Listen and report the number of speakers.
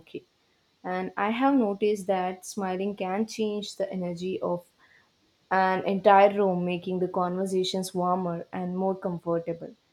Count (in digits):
1